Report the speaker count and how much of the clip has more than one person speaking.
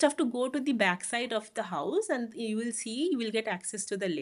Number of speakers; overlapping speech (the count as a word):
one, no overlap